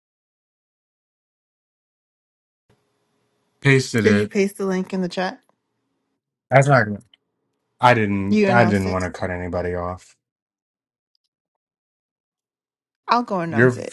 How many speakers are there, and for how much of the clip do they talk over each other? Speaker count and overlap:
2, about 9%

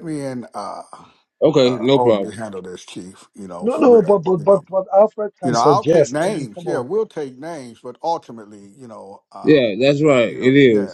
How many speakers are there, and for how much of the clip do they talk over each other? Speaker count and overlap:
3, about 35%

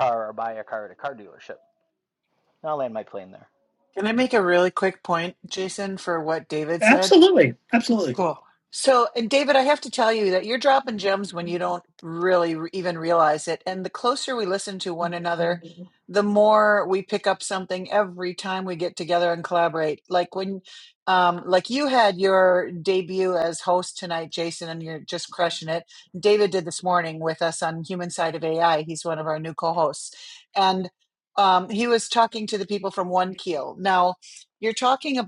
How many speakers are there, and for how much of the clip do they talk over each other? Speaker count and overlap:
3, about 1%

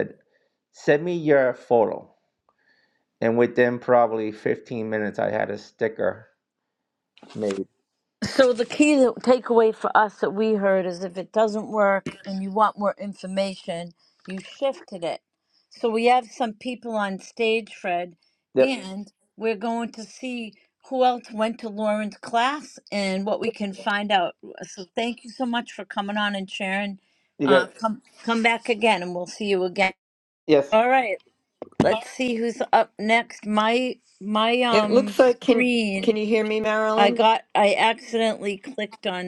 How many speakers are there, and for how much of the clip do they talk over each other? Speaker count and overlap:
3, about 4%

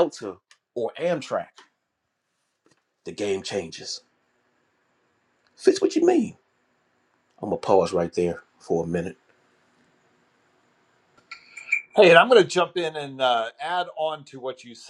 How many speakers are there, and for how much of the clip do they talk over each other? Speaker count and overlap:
2, no overlap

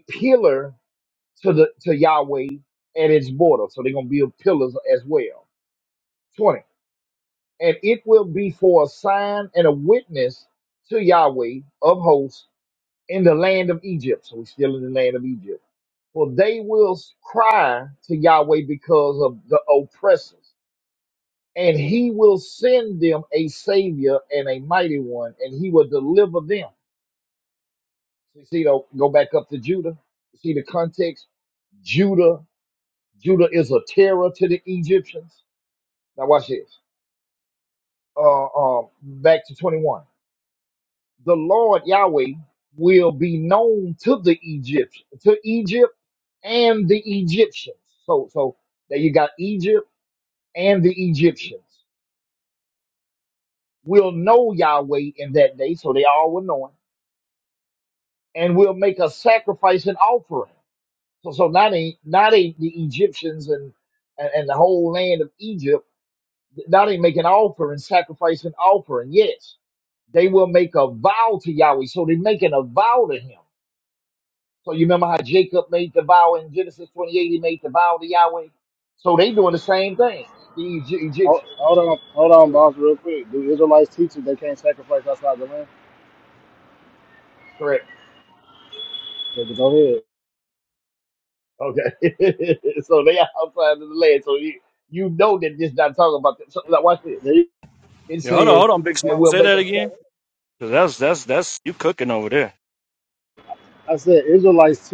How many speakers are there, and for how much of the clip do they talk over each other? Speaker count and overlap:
3, about 2%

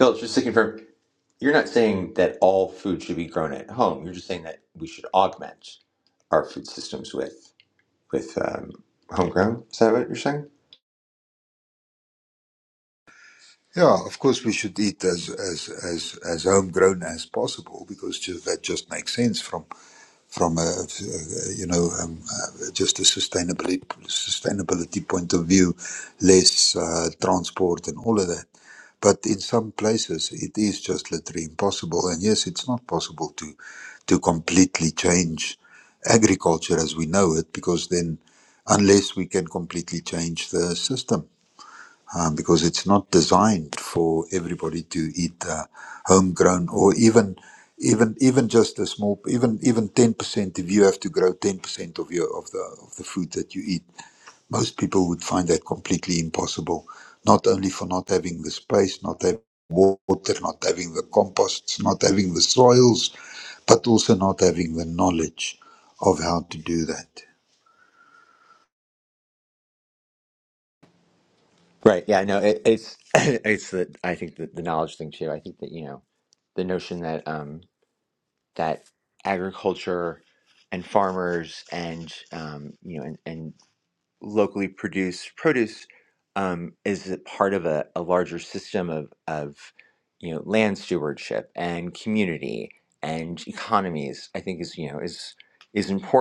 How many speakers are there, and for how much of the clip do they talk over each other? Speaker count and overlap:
2, no overlap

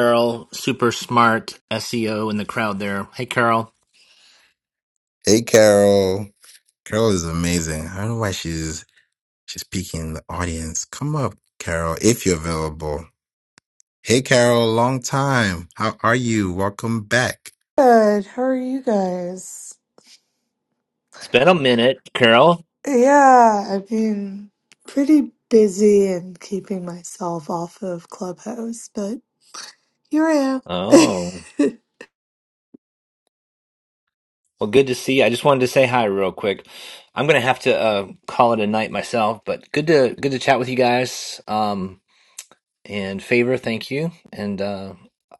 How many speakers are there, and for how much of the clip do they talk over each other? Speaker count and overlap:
3, no overlap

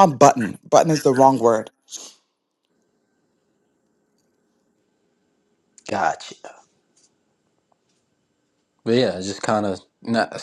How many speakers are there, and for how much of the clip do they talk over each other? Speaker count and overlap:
2, no overlap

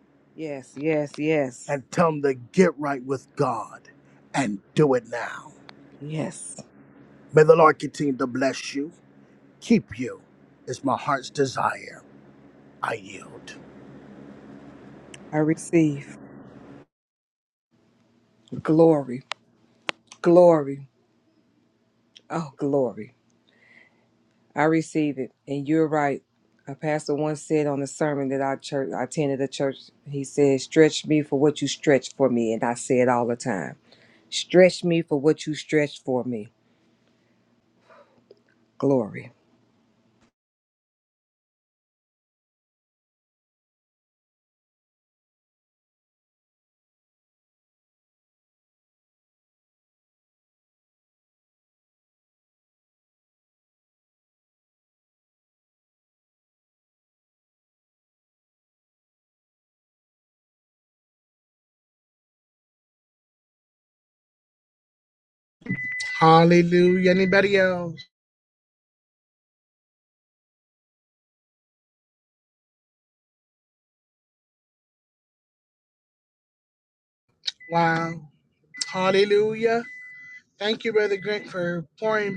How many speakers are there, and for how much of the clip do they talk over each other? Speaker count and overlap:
3, no overlap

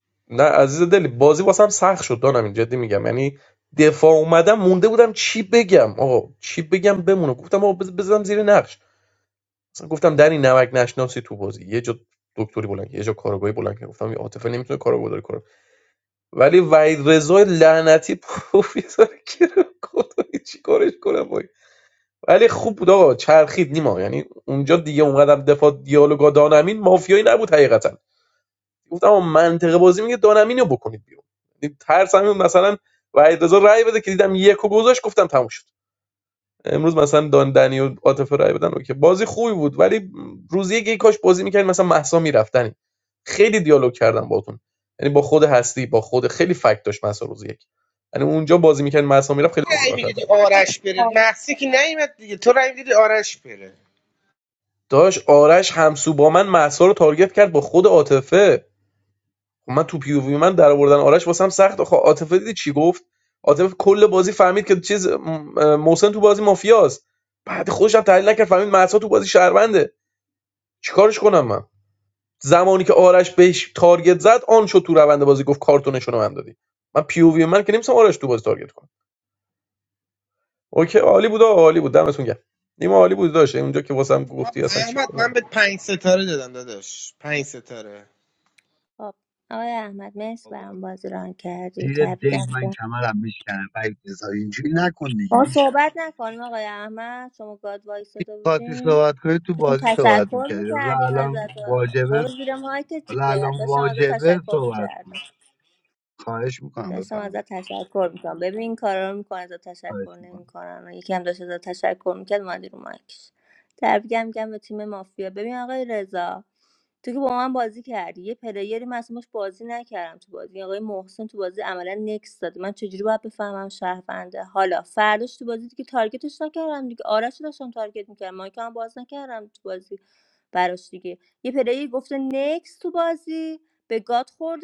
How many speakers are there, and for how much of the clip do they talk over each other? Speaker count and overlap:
4, about 6%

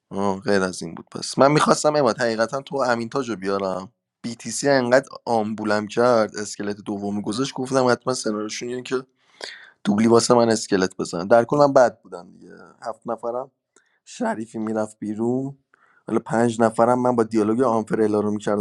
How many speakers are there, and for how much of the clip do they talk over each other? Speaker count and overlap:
1, no overlap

